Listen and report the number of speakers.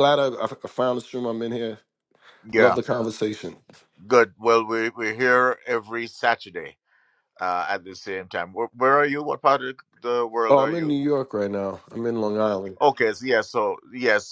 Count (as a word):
two